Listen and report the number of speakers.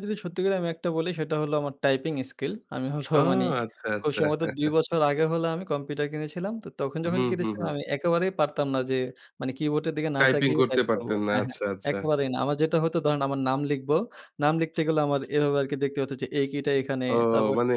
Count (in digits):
2